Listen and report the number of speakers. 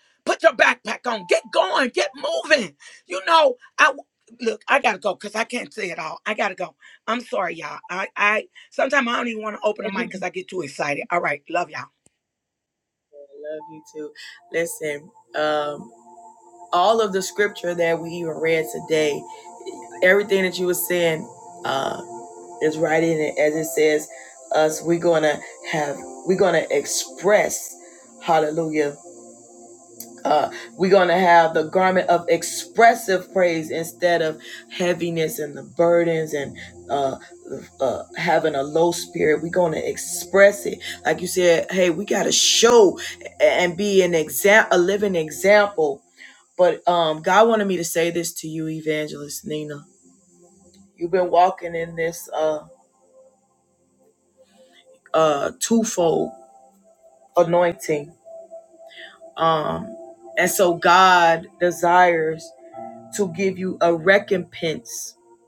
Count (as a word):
two